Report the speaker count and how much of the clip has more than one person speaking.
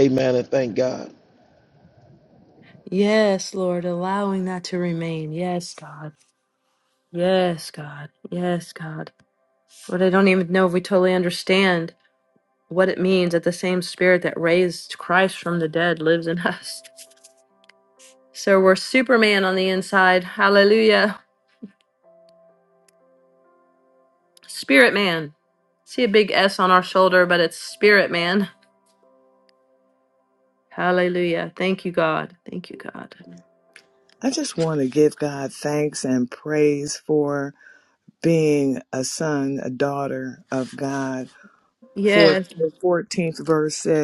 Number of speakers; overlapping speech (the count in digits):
3, about 1%